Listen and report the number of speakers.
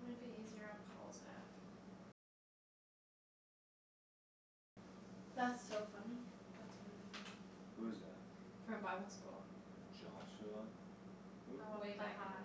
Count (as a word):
three